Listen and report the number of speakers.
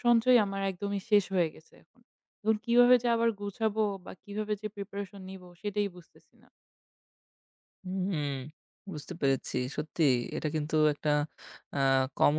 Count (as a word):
two